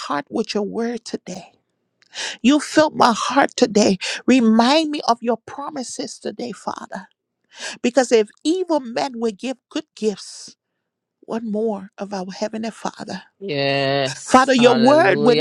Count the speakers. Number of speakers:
2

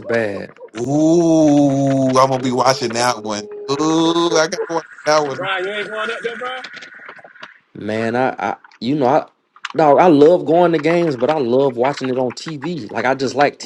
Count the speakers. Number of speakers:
3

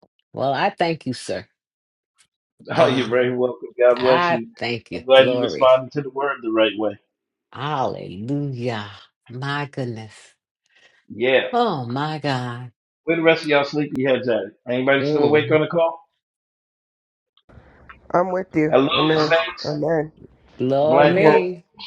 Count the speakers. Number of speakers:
3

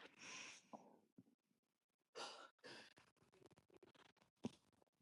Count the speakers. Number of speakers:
0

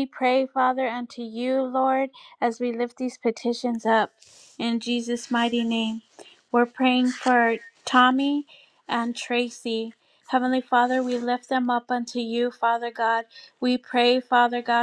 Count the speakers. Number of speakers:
1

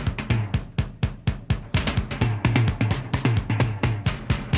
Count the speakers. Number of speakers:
0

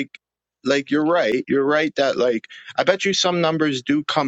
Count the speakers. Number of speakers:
1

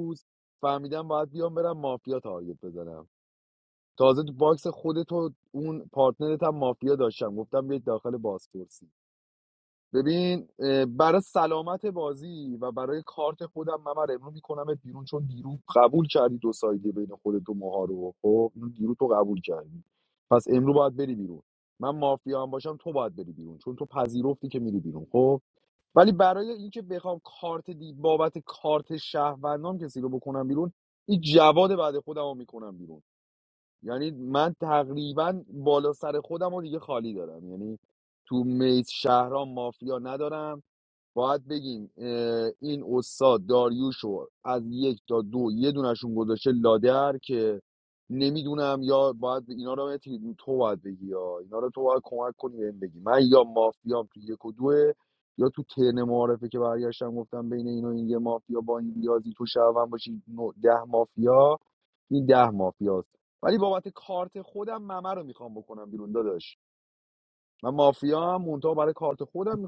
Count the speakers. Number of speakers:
1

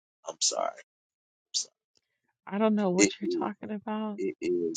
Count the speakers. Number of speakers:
2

